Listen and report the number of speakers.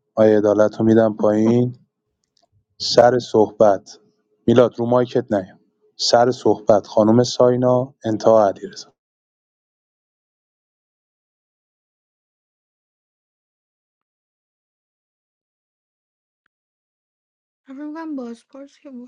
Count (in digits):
2